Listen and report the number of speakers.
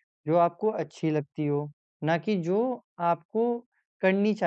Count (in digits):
1